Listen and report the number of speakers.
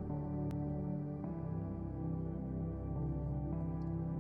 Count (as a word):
zero